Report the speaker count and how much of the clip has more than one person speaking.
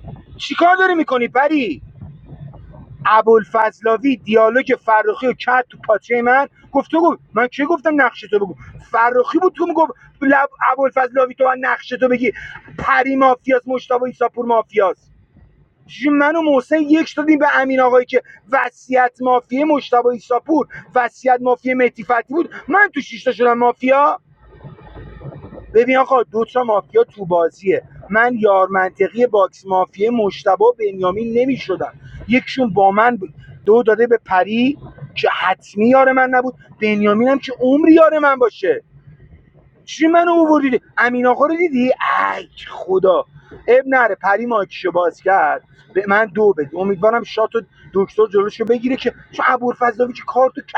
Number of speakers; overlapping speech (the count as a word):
one, no overlap